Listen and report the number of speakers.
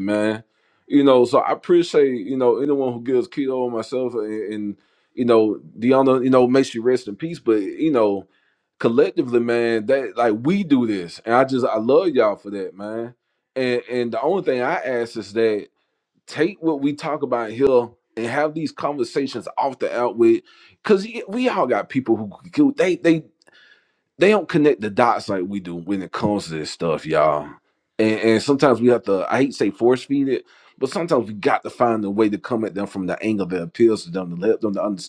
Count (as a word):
one